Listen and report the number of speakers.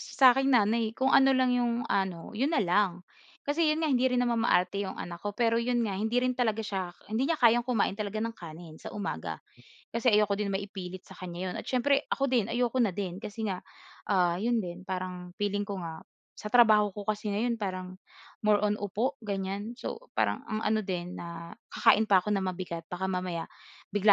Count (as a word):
one